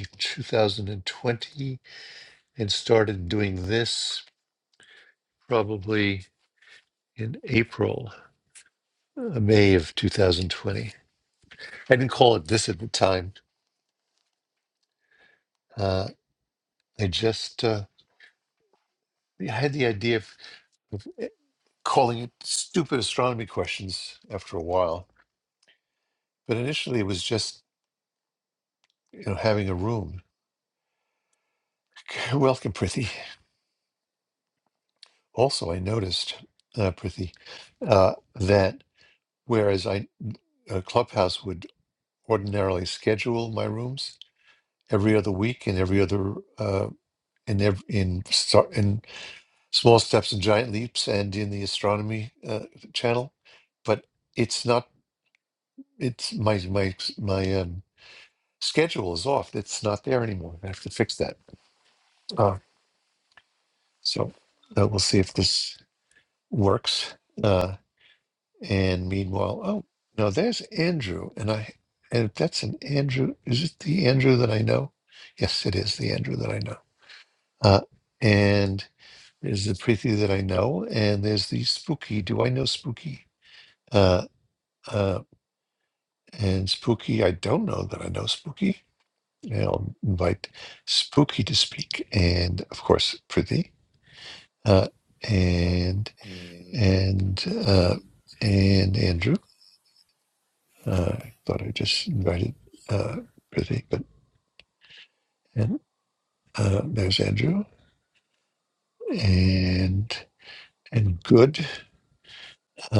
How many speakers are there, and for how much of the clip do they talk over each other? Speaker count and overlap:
1, no overlap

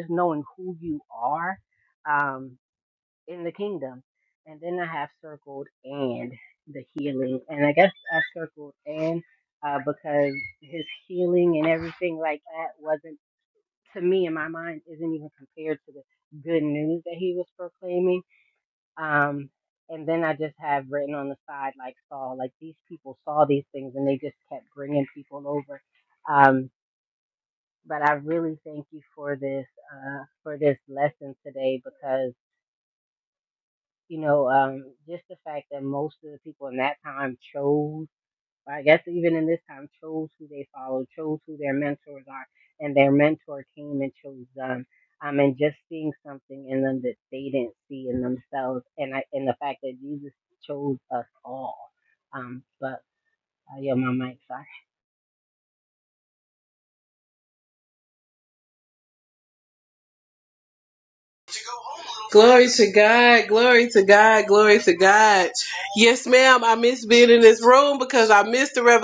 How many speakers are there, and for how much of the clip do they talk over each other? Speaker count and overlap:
2, no overlap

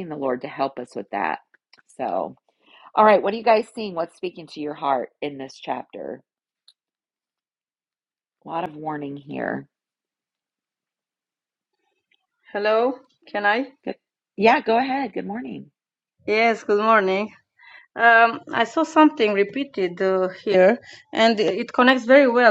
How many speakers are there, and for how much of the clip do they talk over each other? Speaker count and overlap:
2, no overlap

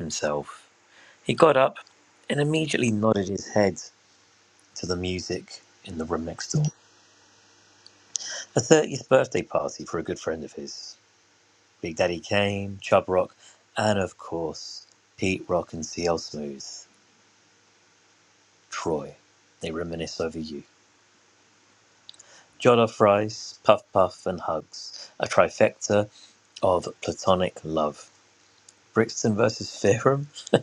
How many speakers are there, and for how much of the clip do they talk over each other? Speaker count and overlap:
1, no overlap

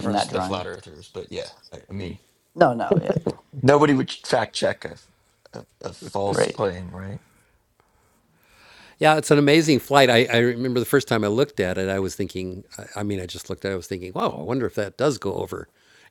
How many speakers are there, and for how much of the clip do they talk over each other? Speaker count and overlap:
3, about 5%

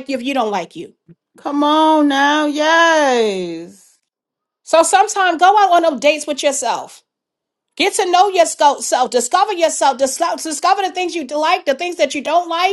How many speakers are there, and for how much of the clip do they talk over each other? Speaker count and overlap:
2, no overlap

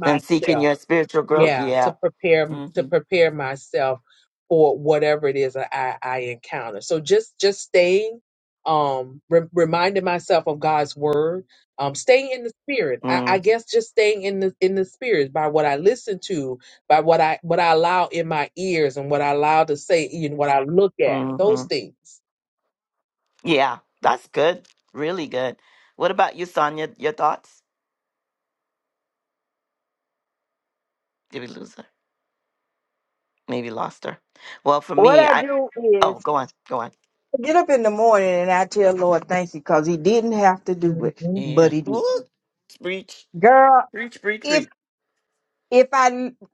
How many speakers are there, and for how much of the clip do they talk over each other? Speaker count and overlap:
3, about 9%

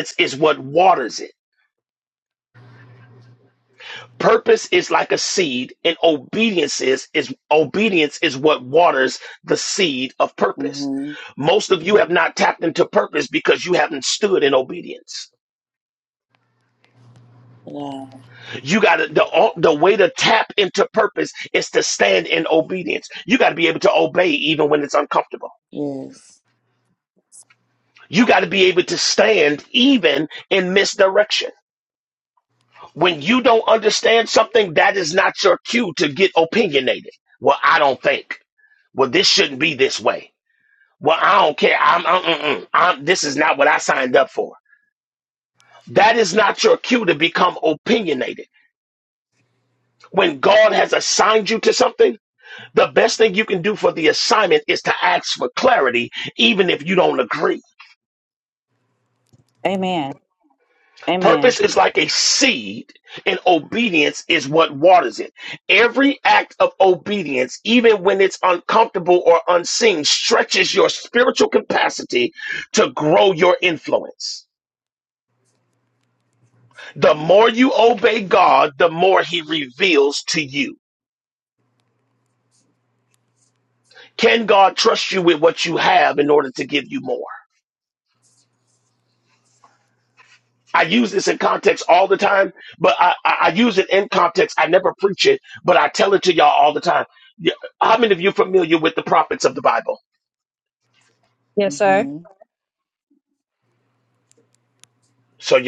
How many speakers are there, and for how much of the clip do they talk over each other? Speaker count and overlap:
3, about 1%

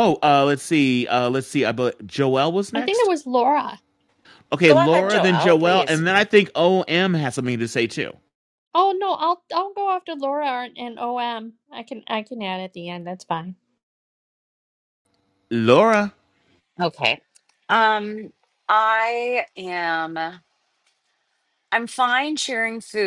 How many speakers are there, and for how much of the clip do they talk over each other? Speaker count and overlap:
3, about 6%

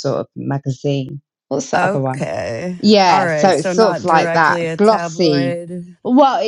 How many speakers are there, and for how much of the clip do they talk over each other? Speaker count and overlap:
2, about 49%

